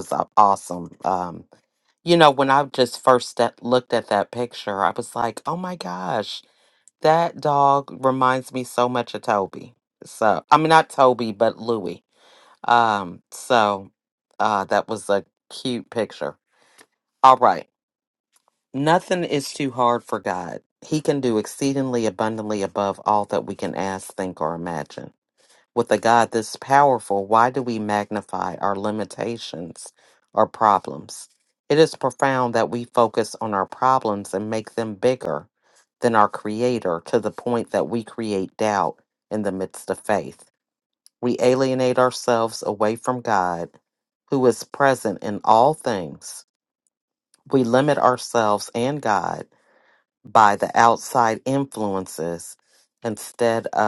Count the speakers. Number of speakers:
one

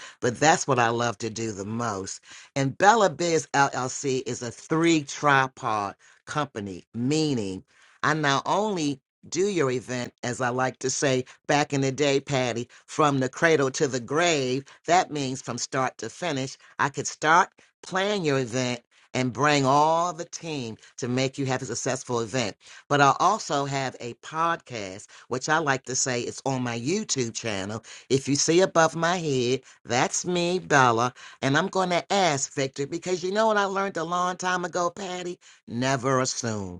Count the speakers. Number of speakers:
one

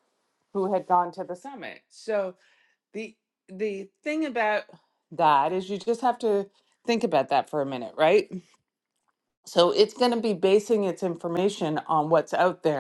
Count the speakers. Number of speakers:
one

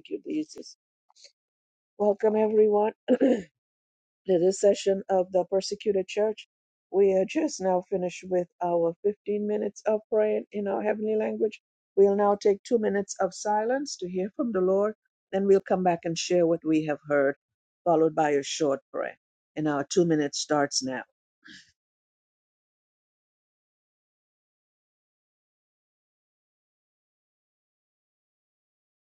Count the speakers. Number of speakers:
one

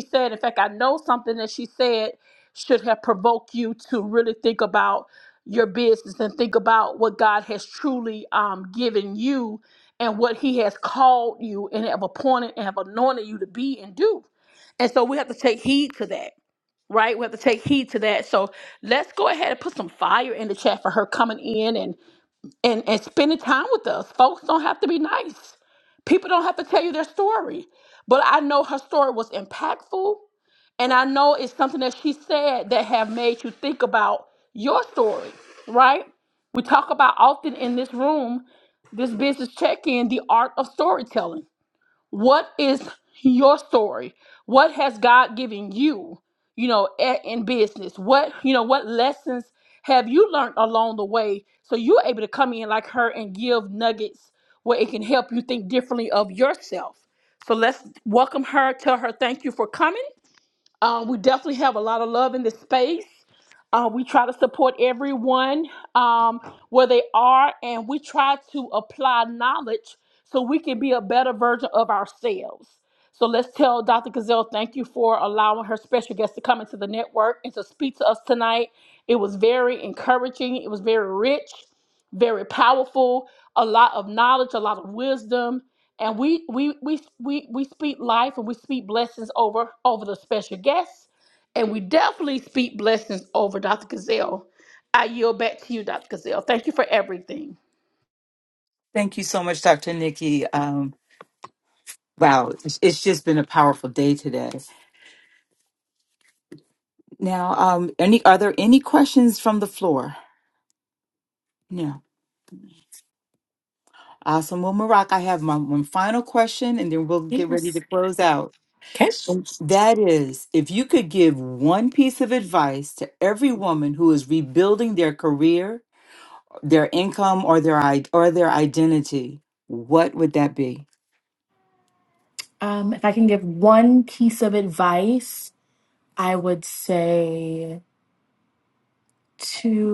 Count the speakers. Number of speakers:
three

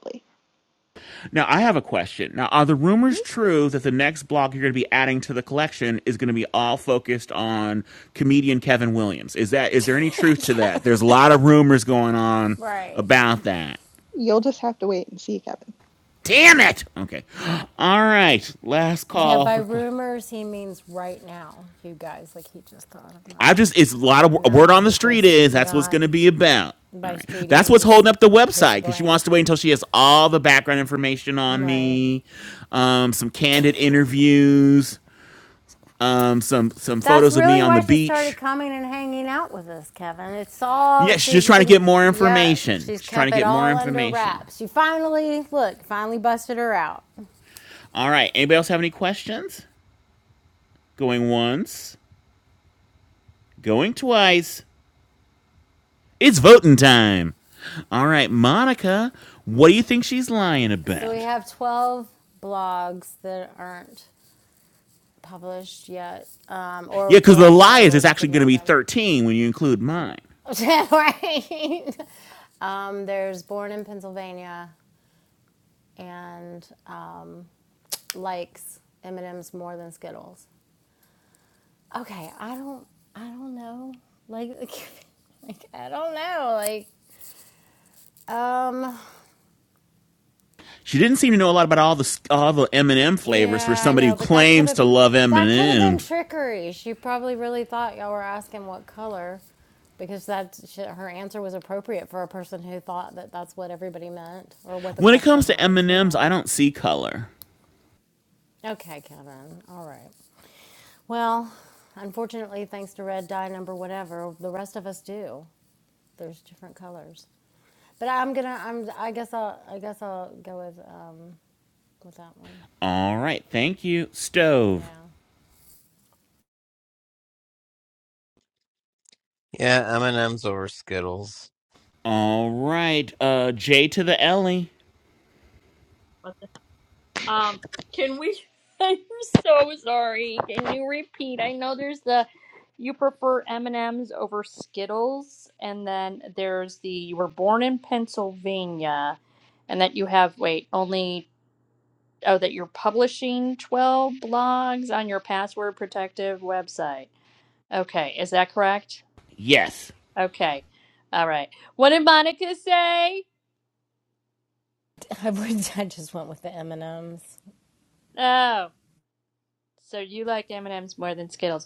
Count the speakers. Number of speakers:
five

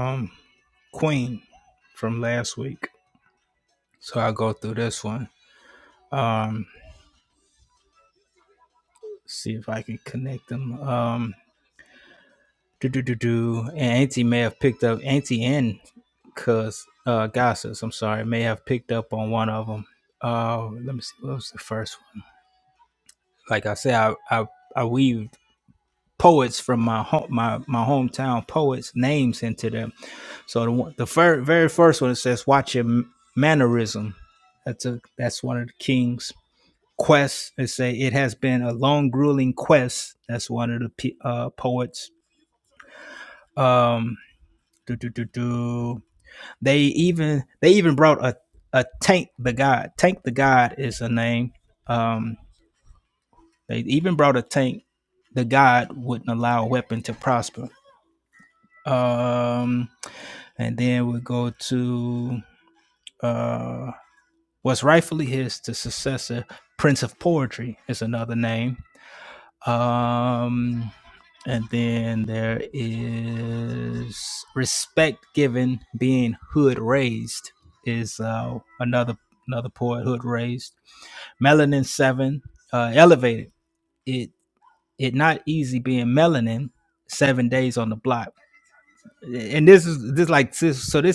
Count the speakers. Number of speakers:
one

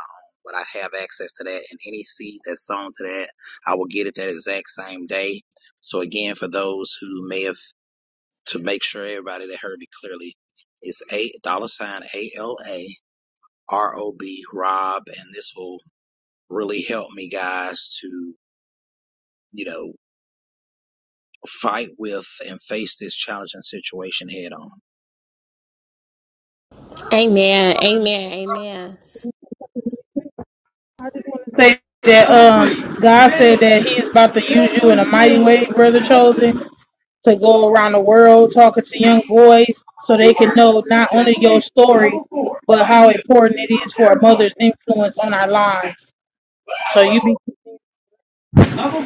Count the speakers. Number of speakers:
three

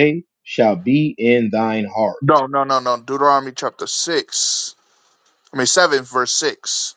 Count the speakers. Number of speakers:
two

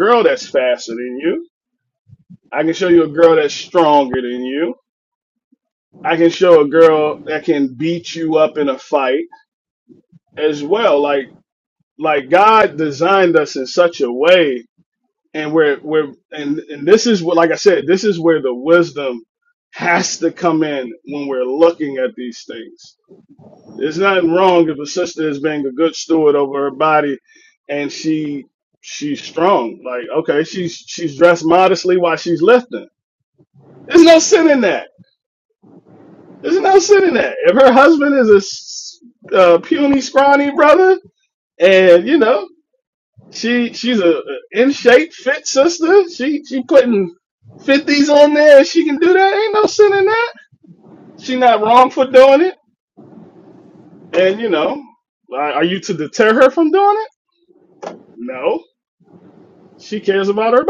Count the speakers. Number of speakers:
one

